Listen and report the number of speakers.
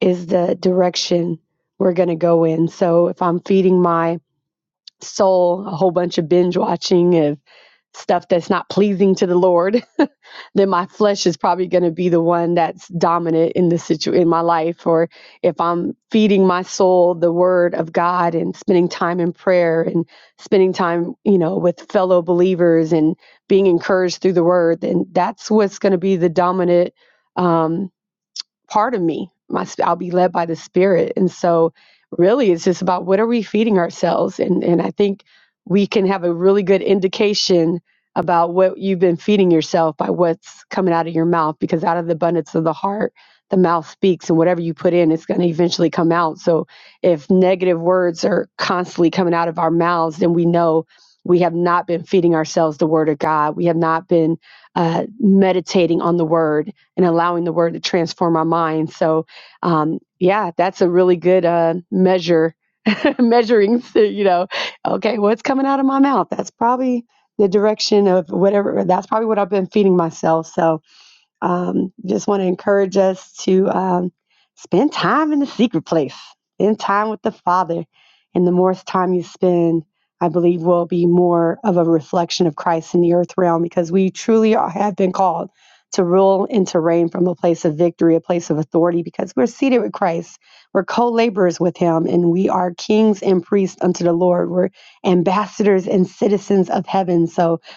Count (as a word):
one